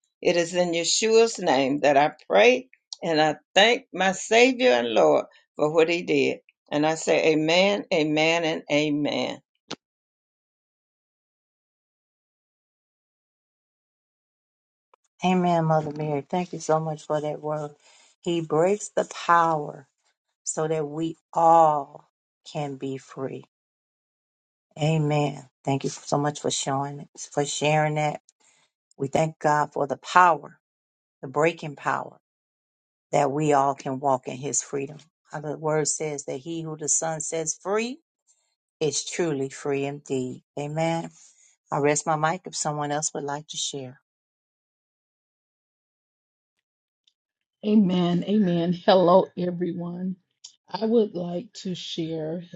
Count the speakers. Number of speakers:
3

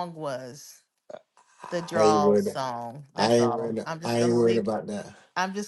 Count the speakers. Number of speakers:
2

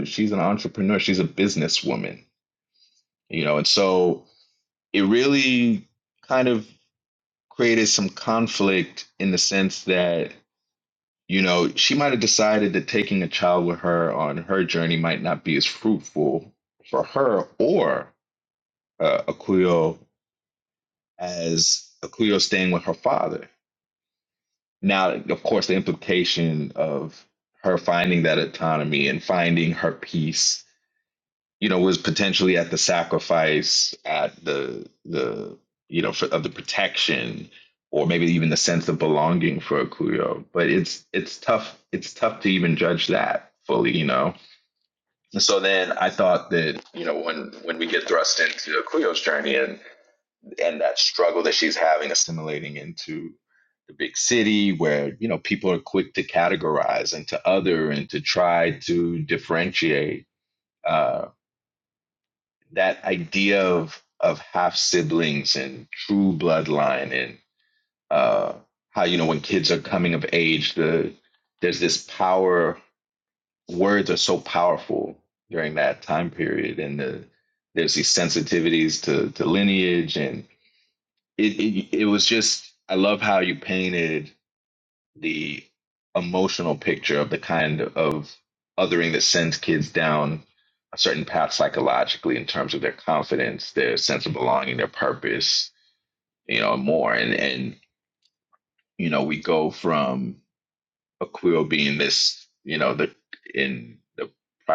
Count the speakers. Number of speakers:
1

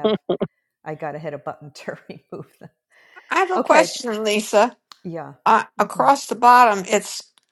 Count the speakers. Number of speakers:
2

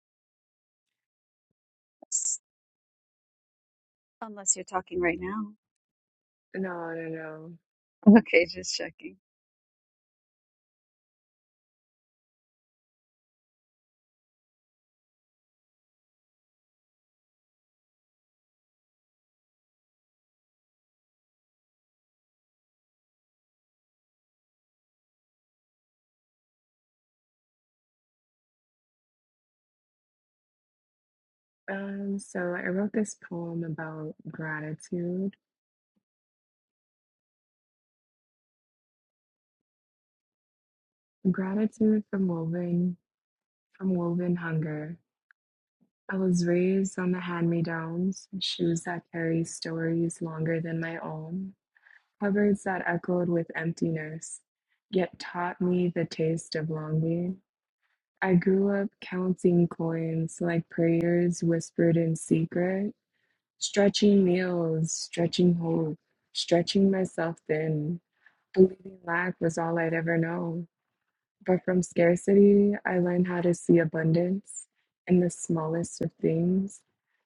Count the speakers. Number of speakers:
2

